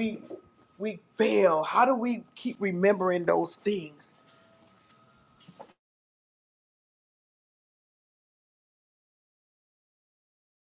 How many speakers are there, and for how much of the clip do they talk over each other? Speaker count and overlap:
one, no overlap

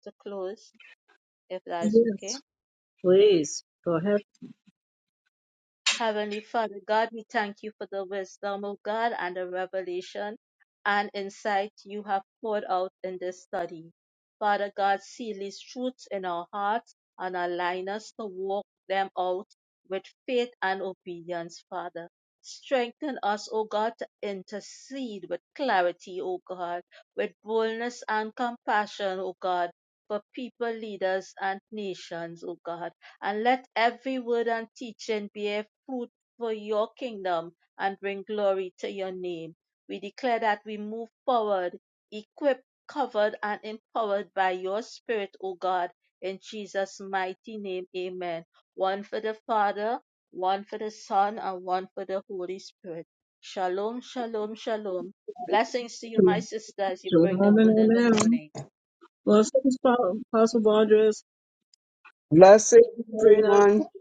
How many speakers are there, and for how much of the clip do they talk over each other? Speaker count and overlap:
three, about 4%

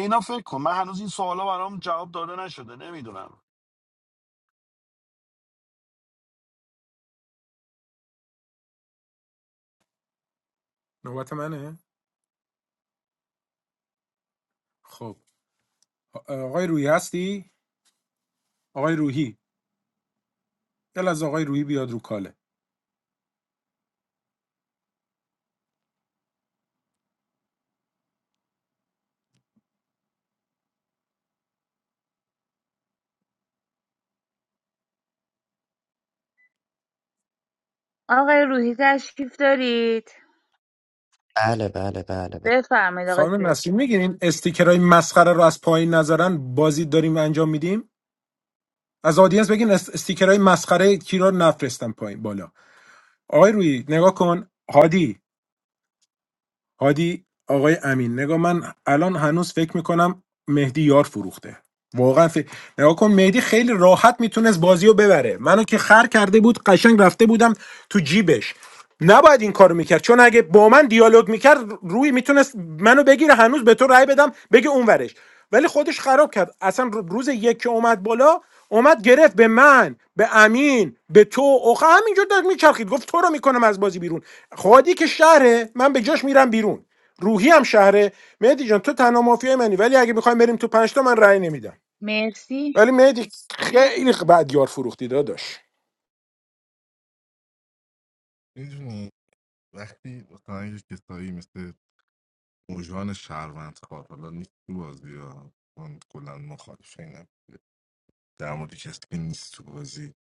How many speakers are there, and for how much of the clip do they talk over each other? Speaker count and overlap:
five, about 1%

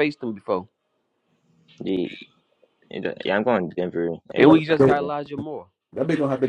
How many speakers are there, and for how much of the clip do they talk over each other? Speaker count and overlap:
three, about 11%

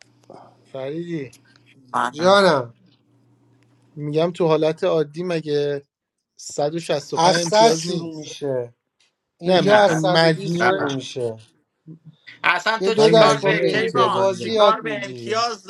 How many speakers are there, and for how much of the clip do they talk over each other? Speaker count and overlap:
three, about 34%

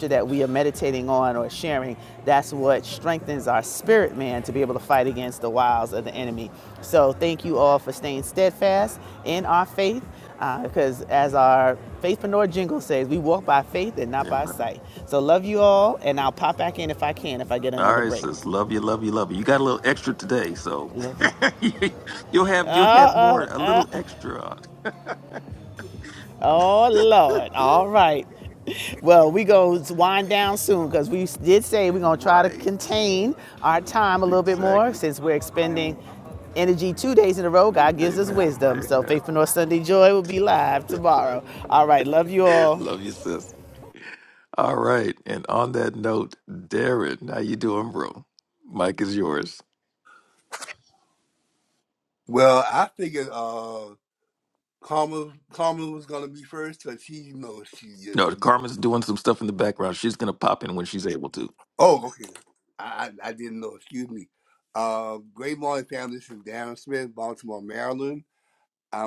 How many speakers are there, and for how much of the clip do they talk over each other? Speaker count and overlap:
three, about 8%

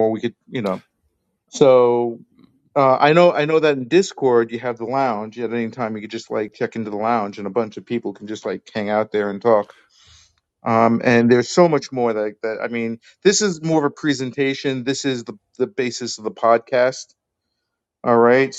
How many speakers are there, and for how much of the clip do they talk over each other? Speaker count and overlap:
one, no overlap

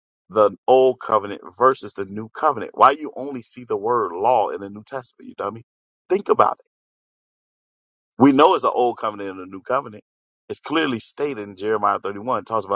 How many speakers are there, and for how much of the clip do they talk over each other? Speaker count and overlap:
one, no overlap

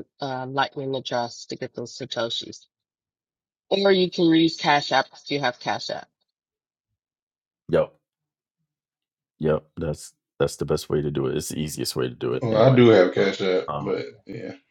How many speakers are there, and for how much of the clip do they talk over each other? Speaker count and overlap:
three, about 4%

